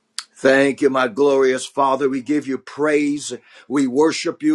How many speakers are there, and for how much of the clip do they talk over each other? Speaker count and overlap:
1, no overlap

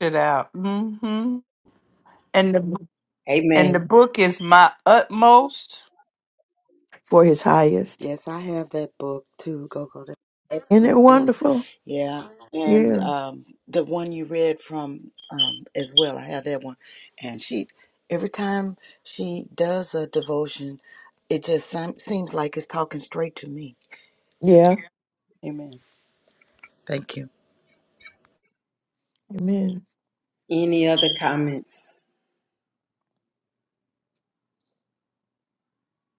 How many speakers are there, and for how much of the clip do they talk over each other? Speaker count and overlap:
4, about 3%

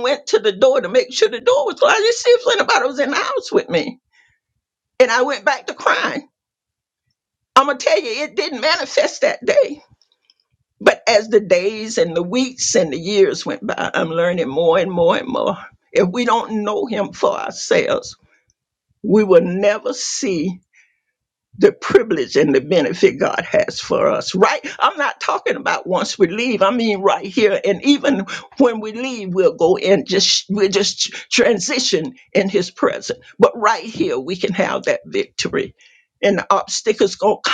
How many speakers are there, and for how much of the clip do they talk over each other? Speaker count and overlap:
1, no overlap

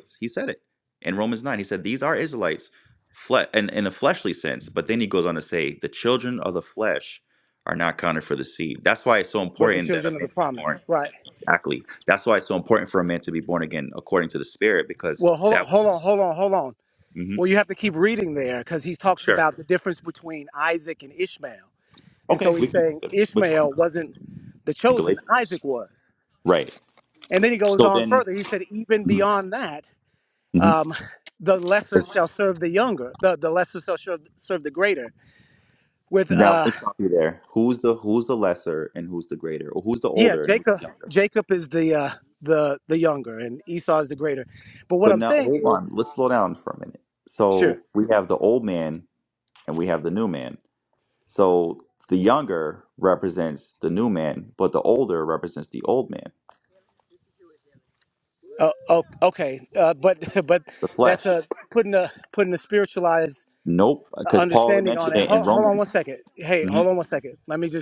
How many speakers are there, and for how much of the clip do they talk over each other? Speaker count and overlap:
2, about 13%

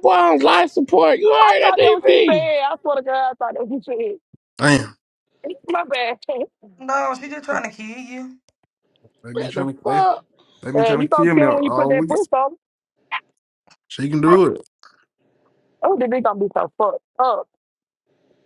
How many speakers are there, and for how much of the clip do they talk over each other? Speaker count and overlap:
4, about 18%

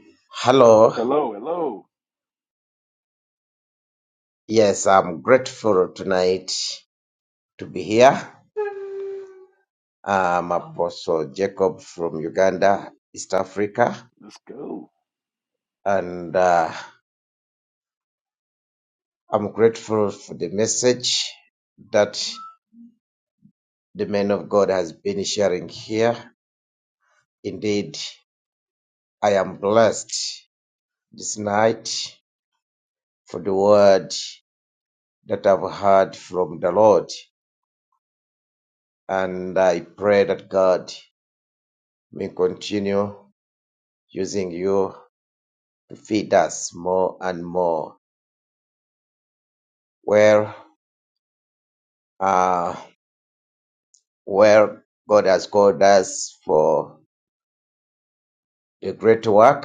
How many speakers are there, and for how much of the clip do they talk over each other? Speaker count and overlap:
2, under 1%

